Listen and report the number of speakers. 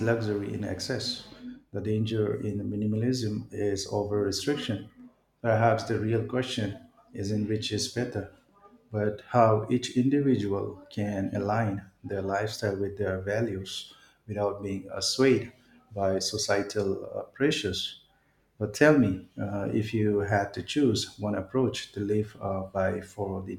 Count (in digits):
1